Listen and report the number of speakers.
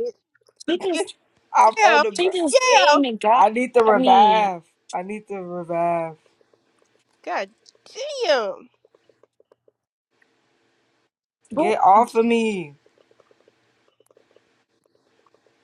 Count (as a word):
three